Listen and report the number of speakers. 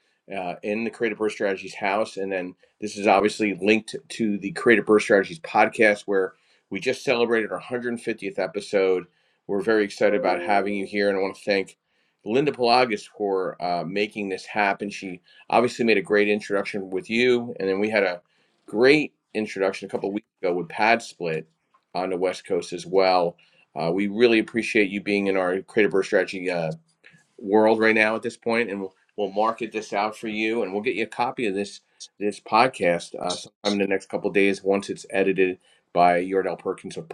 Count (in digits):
1